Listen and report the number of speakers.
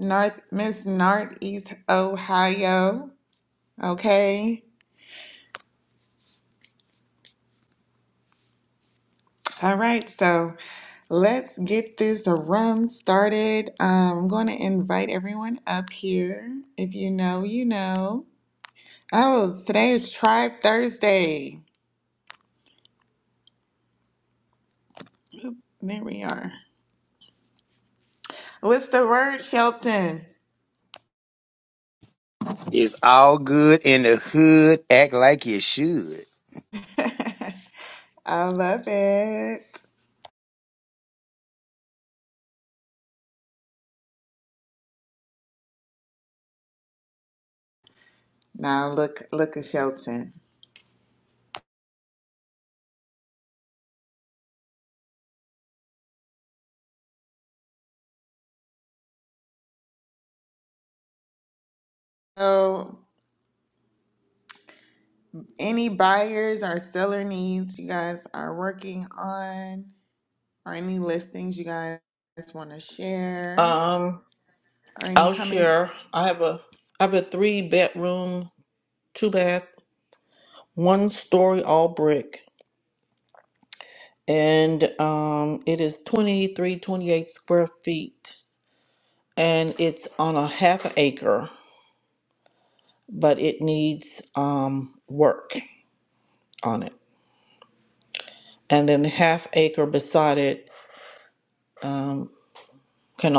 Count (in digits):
3